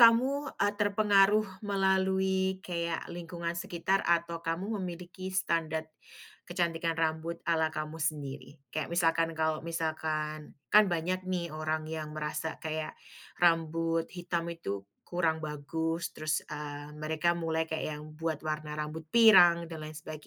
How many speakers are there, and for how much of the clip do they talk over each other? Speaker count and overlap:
one, no overlap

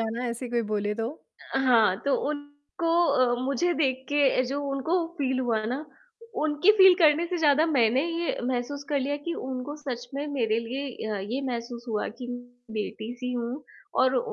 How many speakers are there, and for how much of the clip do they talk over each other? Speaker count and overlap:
two, no overlap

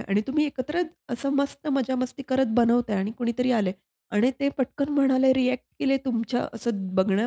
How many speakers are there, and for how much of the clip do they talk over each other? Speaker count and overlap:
one, no overlap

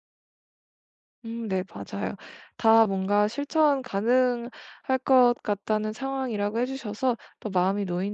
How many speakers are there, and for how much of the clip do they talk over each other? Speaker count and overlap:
one, no overlap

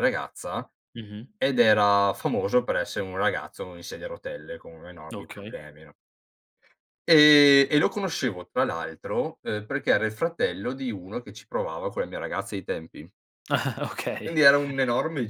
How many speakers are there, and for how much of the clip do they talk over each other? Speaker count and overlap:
two, about 4%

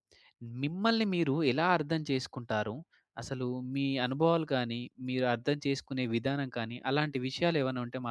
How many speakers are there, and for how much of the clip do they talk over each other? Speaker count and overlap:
one, no overlap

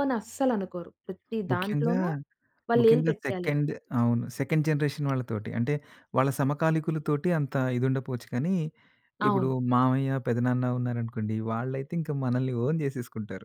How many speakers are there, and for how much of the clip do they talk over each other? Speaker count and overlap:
two, about 12%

